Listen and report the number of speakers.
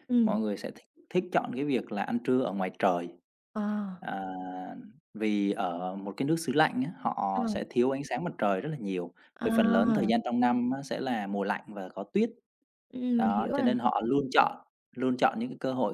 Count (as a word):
two